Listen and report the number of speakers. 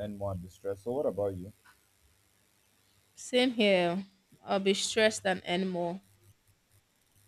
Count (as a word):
two